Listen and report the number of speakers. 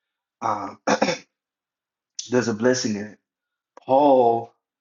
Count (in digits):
1